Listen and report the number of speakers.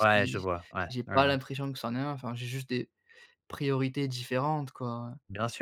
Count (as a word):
two